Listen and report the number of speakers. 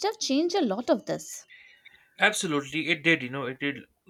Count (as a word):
two